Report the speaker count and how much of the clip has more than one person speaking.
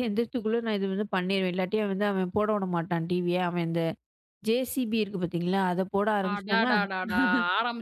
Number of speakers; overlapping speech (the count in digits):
2, about 6%